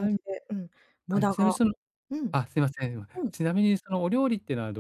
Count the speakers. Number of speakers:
2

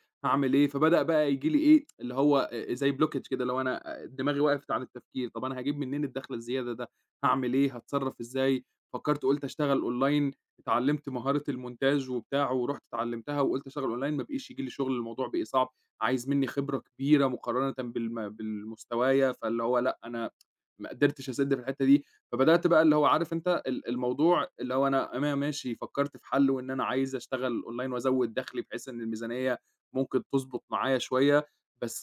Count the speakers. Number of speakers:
1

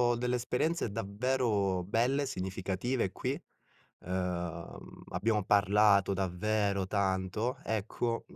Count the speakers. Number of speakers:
1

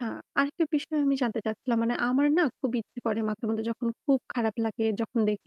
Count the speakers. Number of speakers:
1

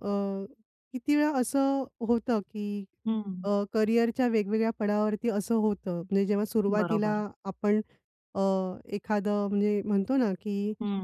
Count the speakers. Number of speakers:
2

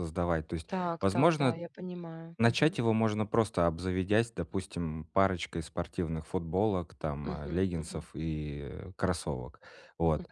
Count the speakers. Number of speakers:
2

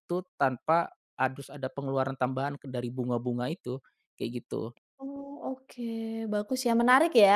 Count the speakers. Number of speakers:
2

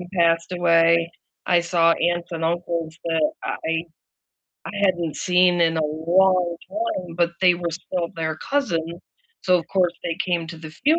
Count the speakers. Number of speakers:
1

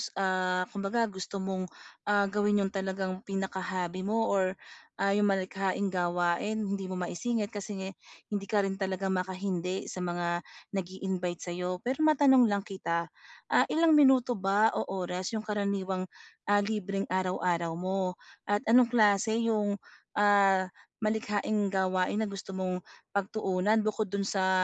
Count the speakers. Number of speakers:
1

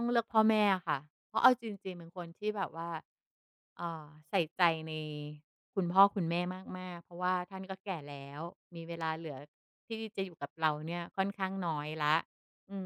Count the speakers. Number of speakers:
1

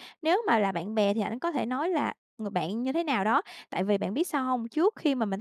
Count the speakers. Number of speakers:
1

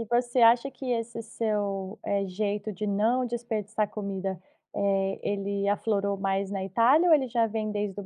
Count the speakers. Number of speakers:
1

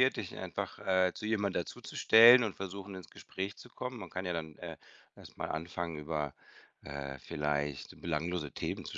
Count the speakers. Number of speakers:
1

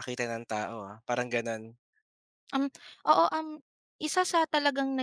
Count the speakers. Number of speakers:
2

